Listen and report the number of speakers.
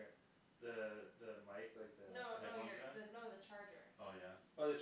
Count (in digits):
3